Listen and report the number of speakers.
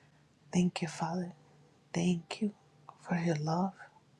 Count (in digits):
1